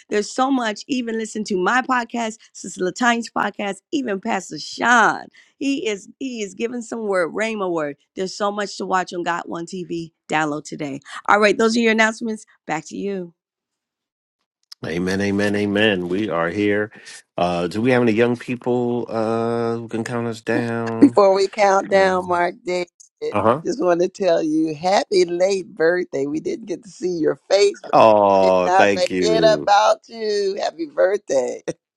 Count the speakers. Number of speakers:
3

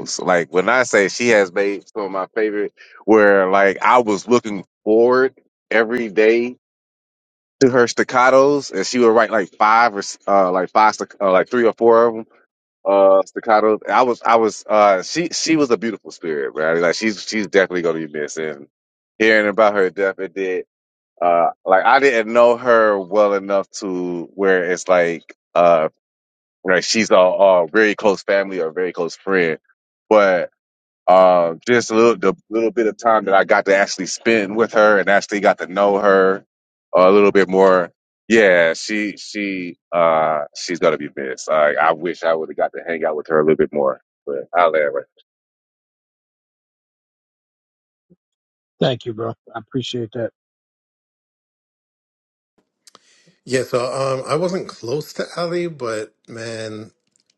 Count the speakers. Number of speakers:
3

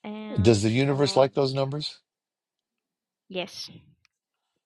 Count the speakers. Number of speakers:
2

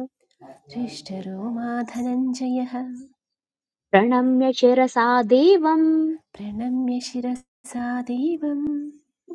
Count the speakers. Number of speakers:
2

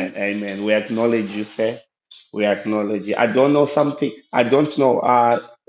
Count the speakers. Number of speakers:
1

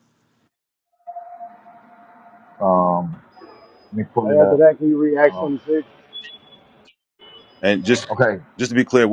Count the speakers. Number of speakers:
3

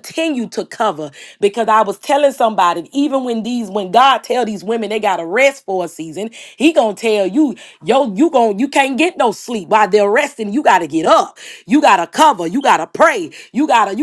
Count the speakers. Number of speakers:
1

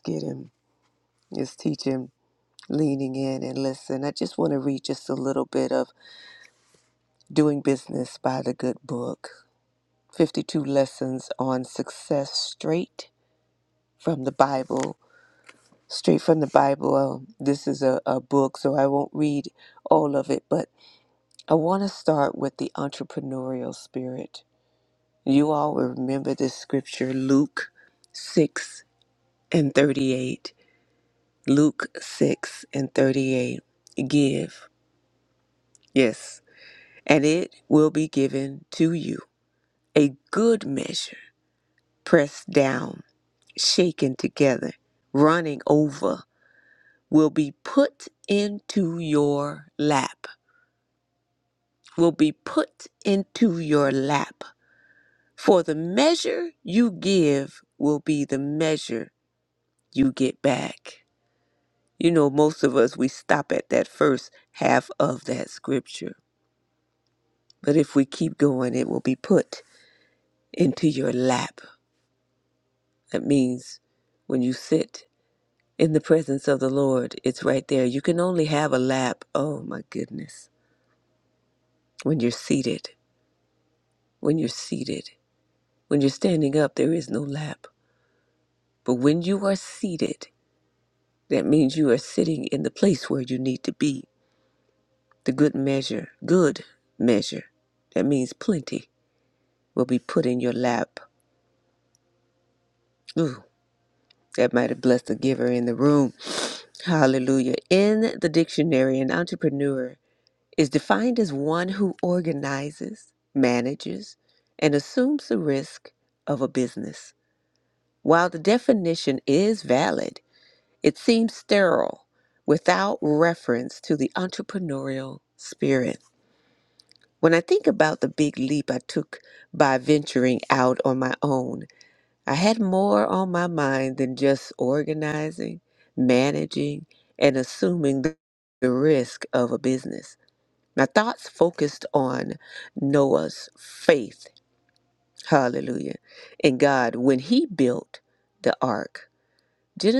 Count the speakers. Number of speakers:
1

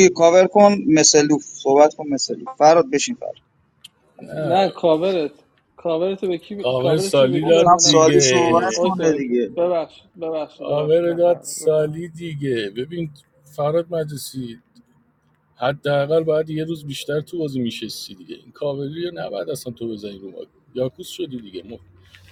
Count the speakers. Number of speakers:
3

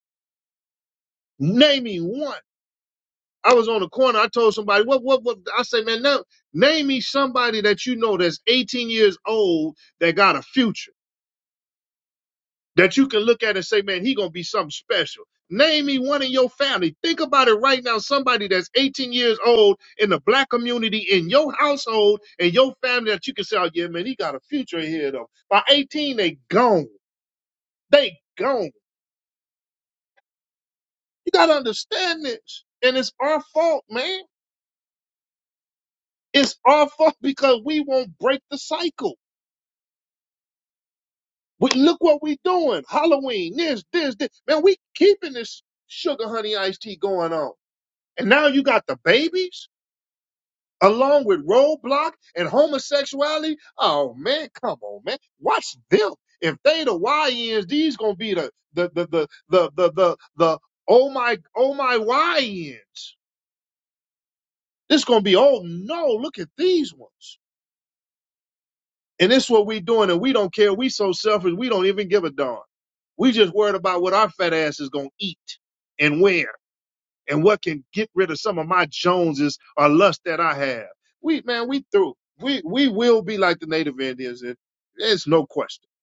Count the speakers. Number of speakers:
1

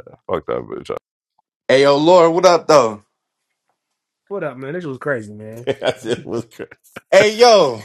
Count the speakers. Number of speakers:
3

